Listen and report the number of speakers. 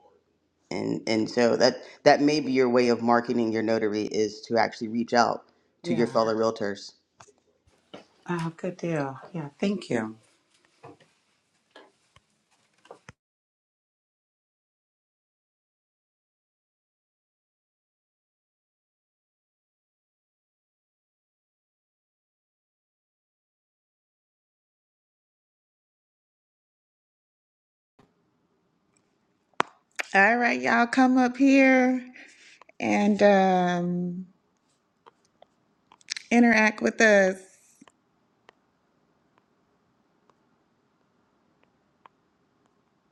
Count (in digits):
3